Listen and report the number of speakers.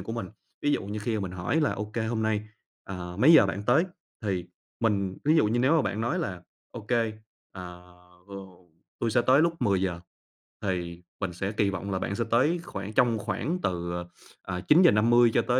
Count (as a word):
one